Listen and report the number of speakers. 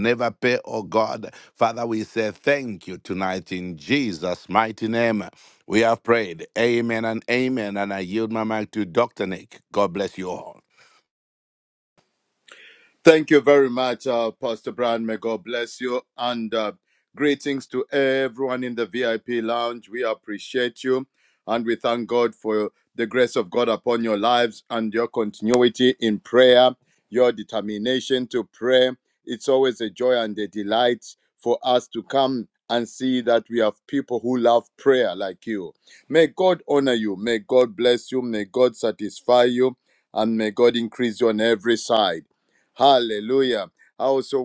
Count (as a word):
two